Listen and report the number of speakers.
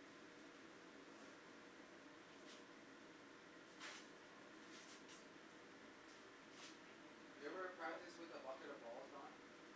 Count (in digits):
1